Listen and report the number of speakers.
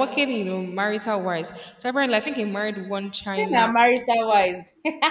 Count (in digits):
2